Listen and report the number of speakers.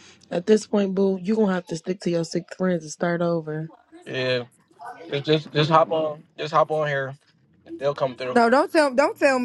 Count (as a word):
three